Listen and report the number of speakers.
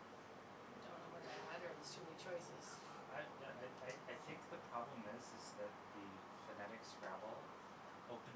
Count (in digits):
2